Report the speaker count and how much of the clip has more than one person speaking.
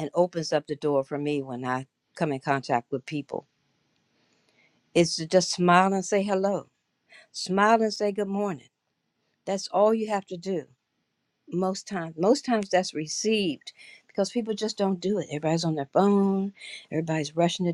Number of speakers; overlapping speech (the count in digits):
1, no overlap